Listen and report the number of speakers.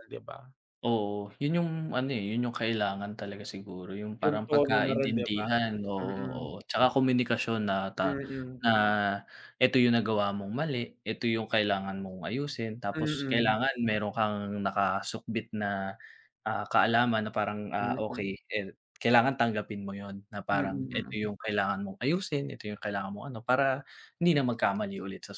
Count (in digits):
2